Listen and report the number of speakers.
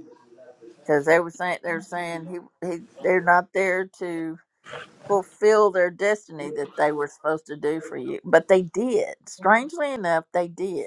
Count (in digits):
1